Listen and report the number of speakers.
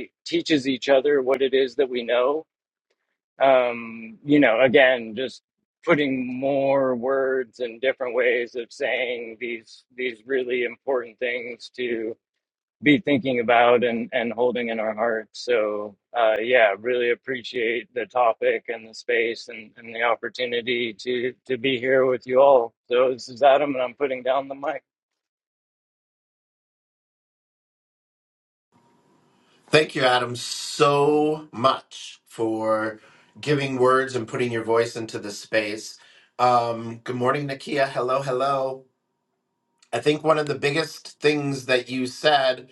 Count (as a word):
two